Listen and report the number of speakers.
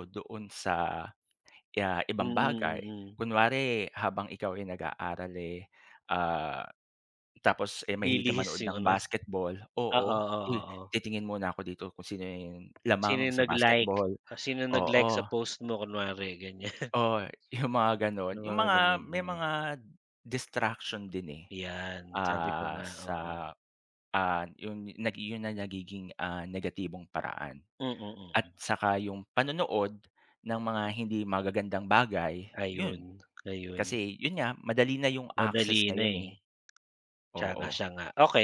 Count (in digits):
2